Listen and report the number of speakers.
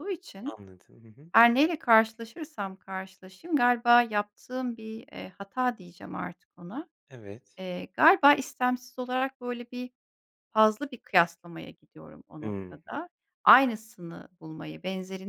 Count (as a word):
two